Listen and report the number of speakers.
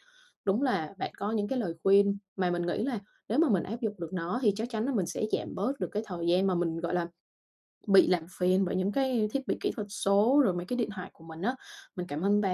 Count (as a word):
one